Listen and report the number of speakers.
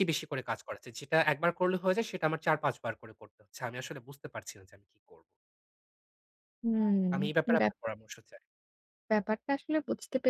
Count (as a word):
two